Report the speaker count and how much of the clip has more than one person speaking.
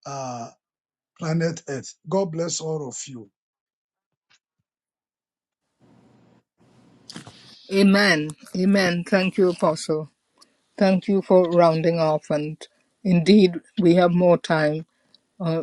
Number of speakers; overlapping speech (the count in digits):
2, no overlap